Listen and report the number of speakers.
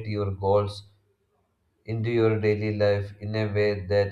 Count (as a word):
one